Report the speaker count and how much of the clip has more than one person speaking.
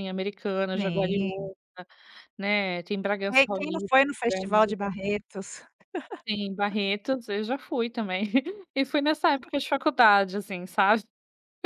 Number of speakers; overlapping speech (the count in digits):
2, about 15%